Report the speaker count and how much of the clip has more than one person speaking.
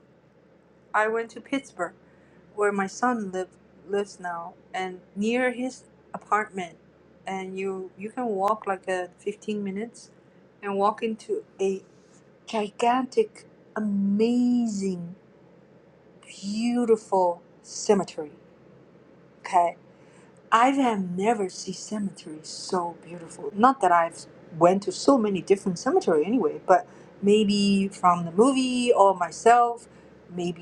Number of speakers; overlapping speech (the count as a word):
one, no overlap